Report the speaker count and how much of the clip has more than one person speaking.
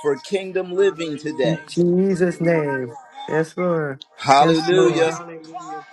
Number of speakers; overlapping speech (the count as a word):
three, about 50%